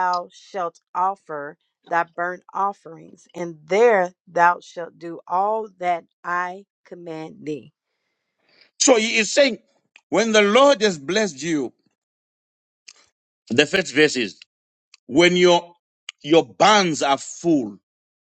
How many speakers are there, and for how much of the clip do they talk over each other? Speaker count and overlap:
2, no overlap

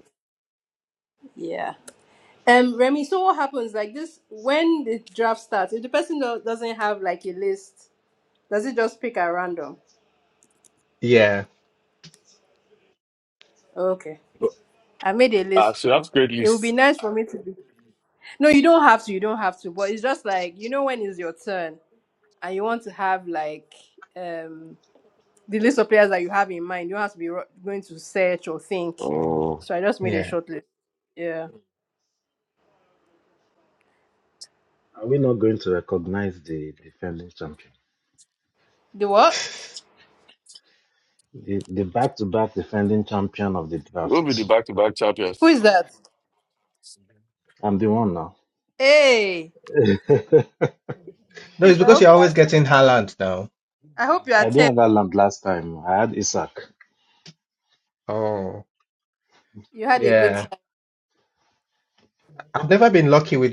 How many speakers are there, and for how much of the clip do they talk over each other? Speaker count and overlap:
4, about 5%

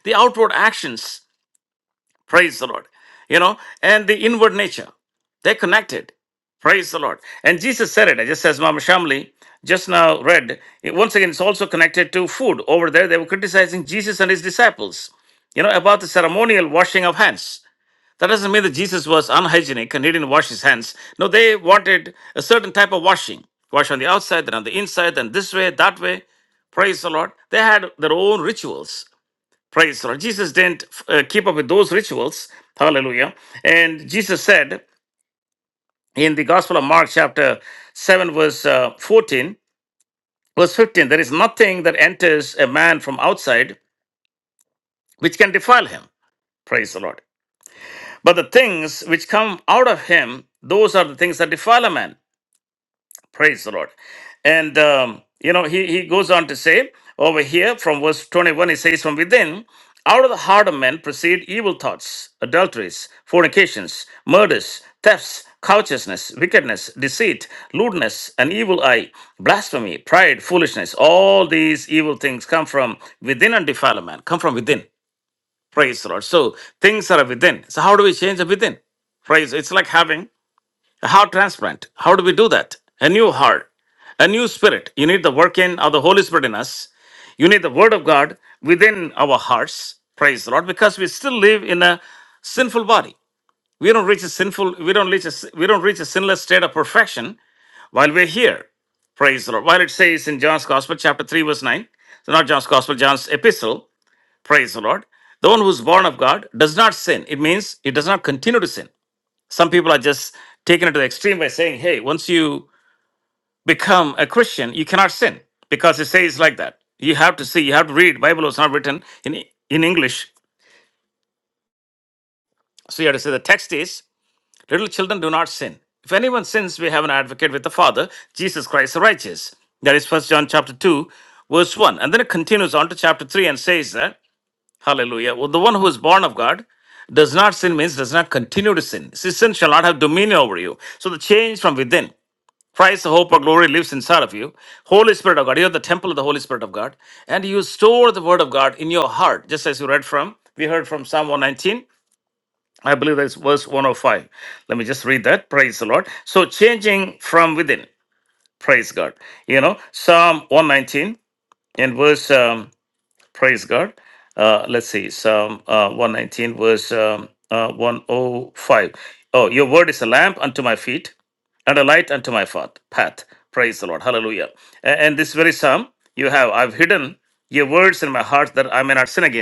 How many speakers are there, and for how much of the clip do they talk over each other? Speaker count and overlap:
1, no overlap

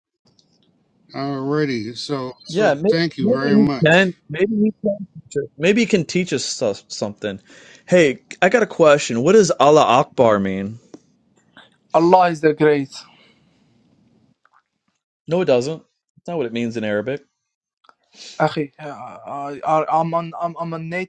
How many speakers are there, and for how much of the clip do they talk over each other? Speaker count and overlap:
3, about 6%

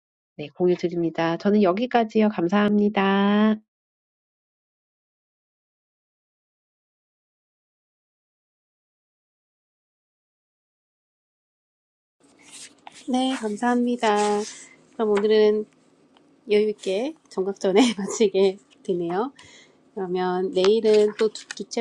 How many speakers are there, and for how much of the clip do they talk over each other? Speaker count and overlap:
2, no overlap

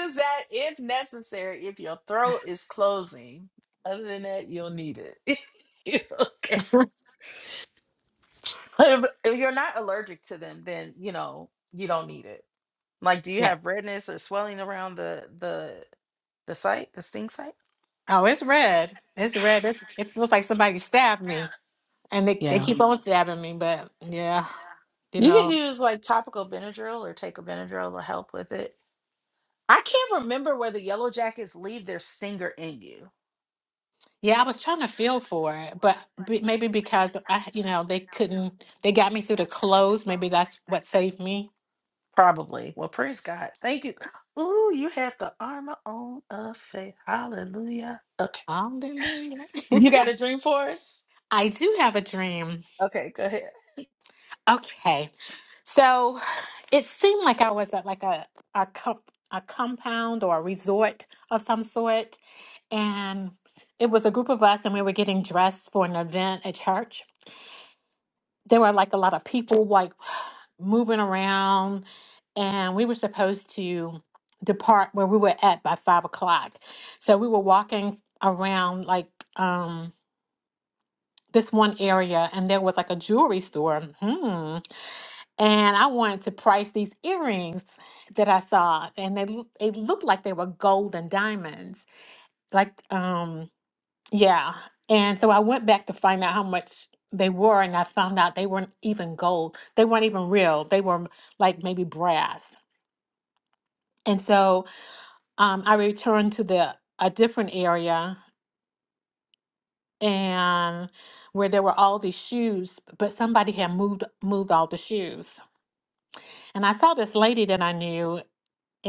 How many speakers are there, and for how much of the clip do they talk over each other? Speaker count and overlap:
2, about 1%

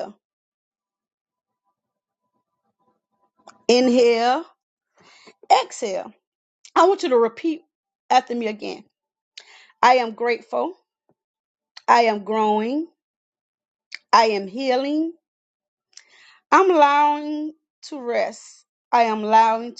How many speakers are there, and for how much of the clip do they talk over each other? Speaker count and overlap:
1, no overlap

